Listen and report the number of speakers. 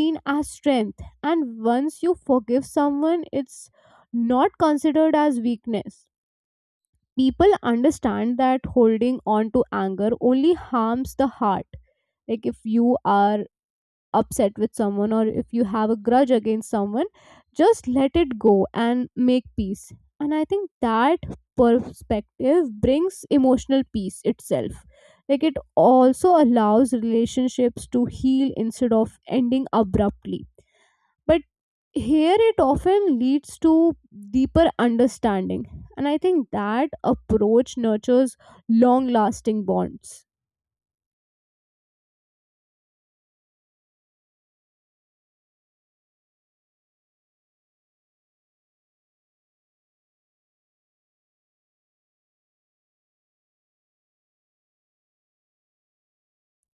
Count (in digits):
1